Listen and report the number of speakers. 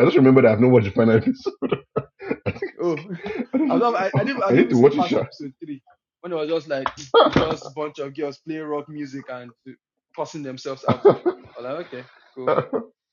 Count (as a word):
two